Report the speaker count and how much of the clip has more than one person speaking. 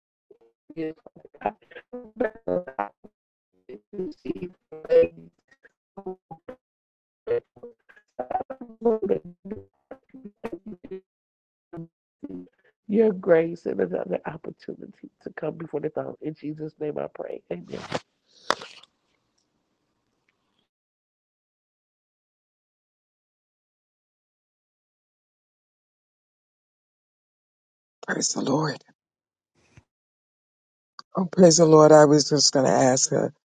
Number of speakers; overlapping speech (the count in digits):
2, no overlap